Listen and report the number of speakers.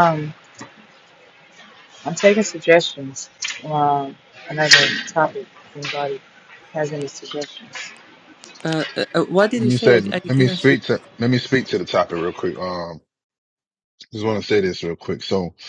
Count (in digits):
3